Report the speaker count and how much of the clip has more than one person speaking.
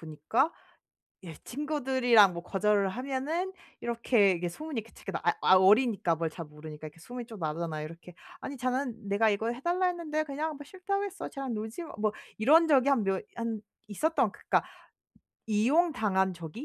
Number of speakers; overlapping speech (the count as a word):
one, no overlap